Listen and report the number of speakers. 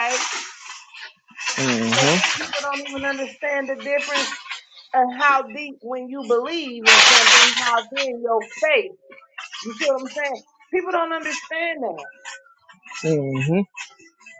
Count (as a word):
two